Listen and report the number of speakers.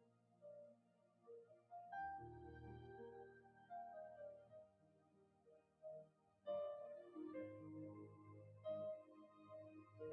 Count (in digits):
0